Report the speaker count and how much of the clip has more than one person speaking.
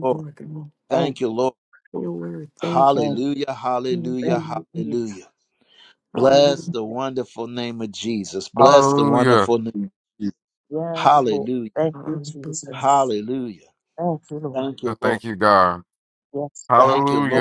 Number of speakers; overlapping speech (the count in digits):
4, about 37%